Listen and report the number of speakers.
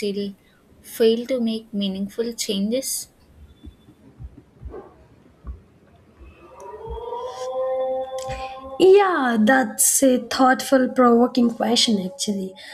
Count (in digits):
2